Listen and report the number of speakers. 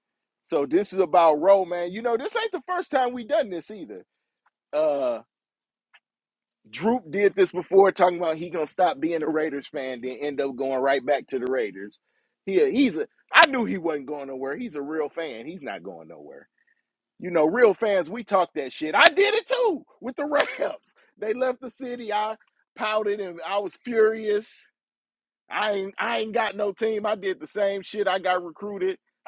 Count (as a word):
one